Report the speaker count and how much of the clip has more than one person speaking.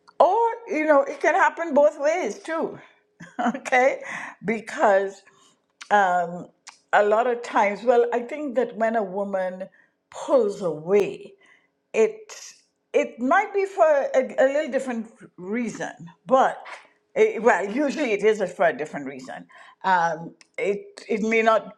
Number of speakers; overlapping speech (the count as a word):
one, no overlap